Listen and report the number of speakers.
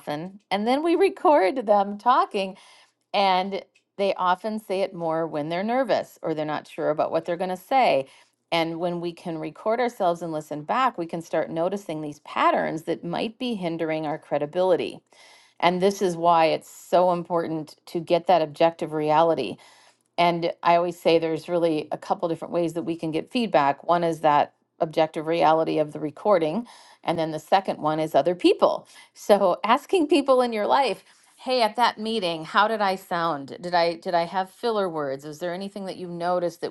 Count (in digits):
1